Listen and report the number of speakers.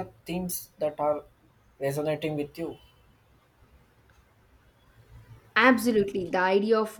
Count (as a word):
two